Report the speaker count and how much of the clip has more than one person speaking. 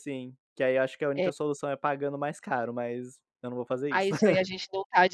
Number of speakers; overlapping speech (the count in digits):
2, about 7%